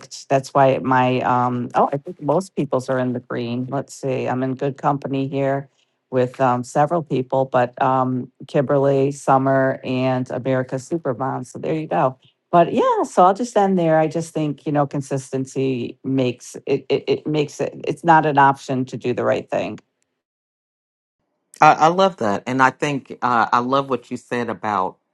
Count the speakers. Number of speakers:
2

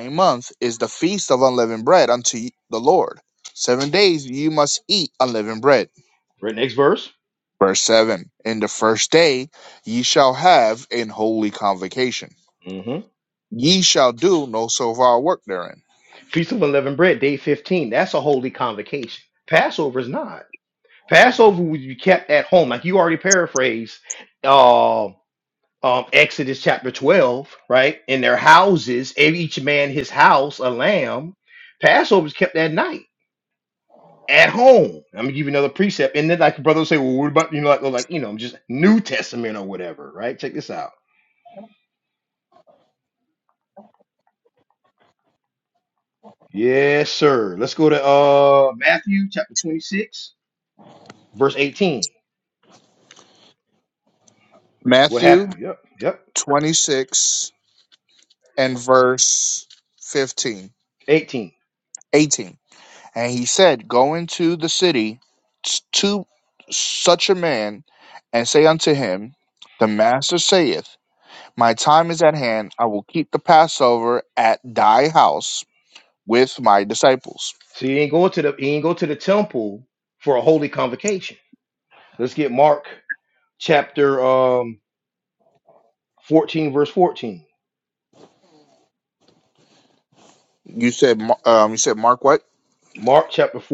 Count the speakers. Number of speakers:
2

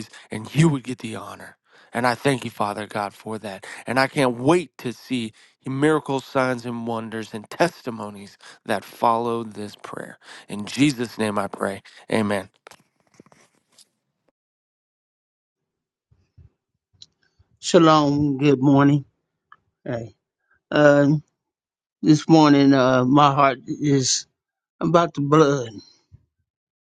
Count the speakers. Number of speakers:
2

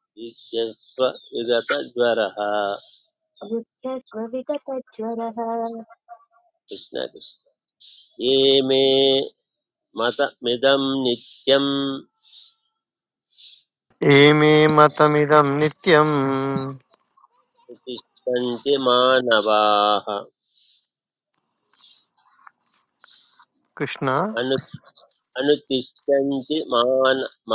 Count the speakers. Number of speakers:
3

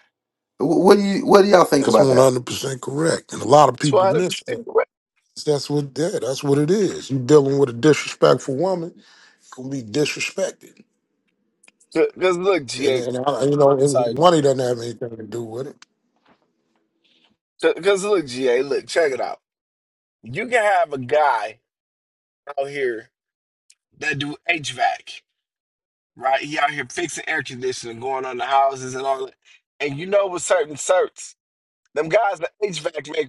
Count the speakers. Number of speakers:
3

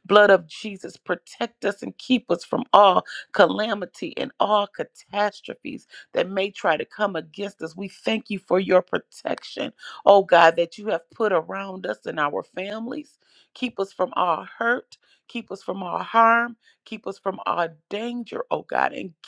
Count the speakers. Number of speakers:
1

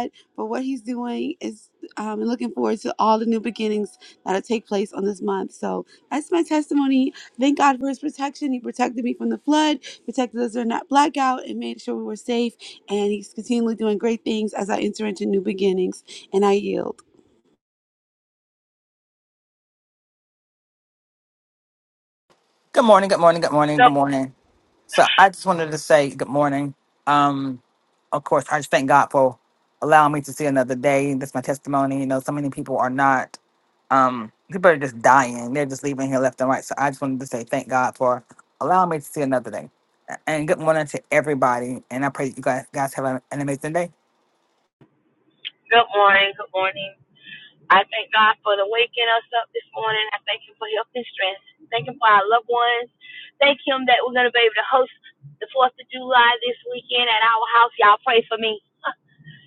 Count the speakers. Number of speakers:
3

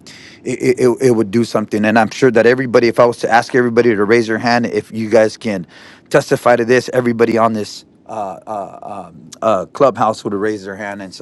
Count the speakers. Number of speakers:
1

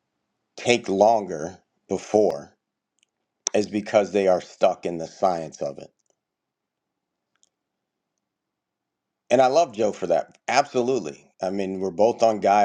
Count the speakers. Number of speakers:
1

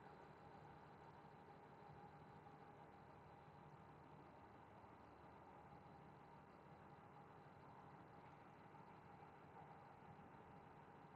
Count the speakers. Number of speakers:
0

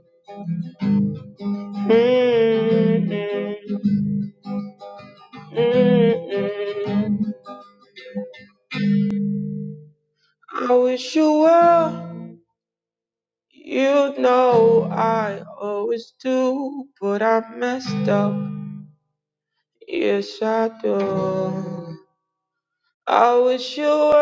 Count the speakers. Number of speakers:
1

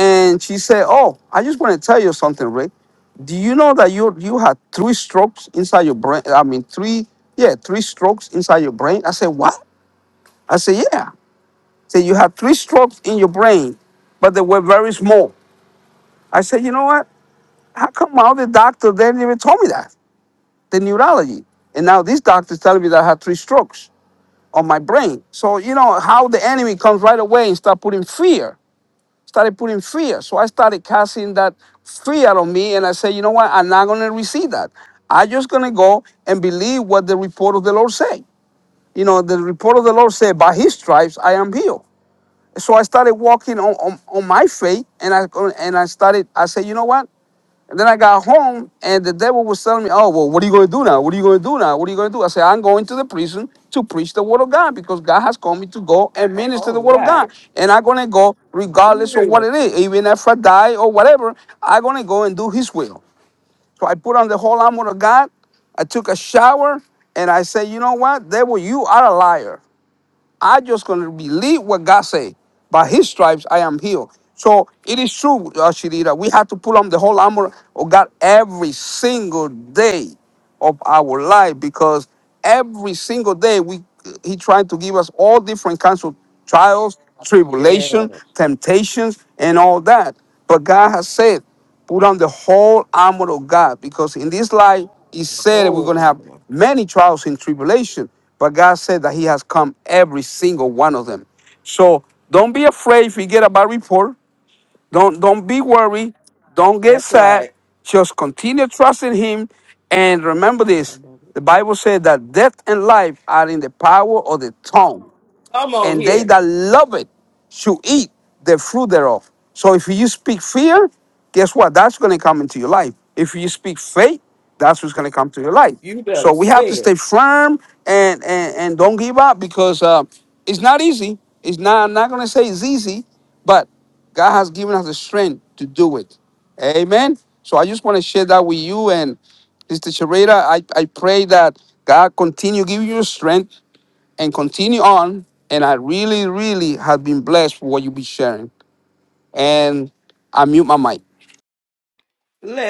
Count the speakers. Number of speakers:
2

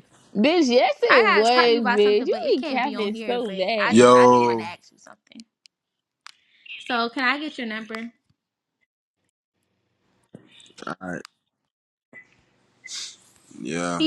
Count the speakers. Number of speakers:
3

